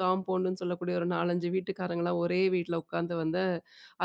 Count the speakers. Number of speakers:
one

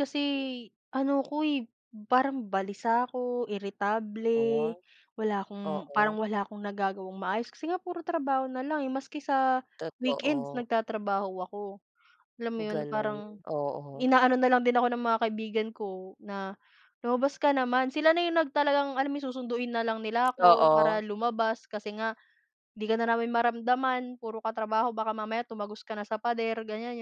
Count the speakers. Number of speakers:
two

